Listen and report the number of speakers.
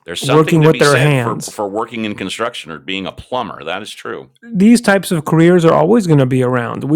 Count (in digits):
2